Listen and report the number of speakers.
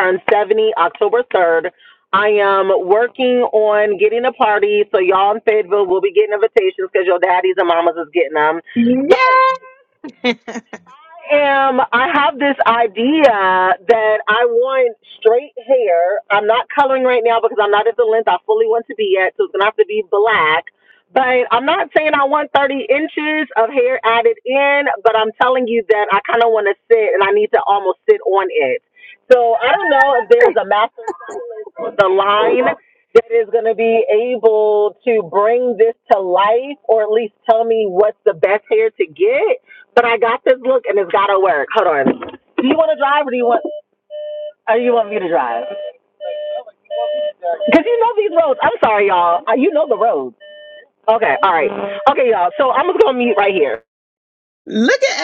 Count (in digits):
2